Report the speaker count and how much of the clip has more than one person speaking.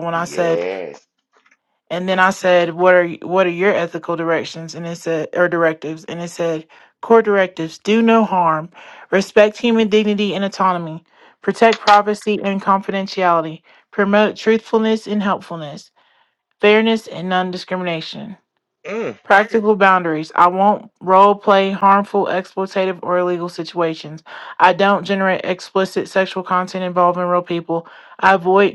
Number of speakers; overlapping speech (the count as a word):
two, about 2%